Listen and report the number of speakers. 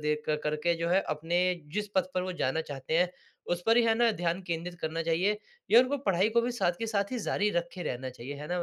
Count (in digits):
1